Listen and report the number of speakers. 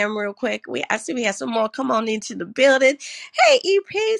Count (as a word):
one